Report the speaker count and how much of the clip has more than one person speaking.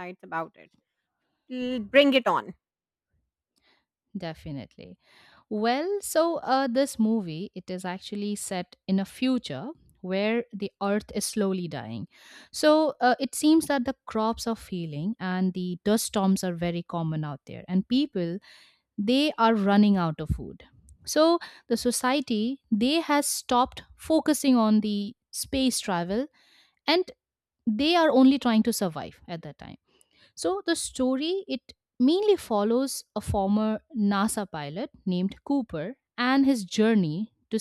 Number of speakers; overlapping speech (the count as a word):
two, no overlap